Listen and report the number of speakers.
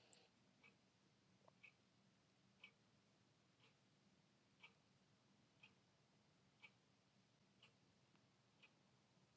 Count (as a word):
zero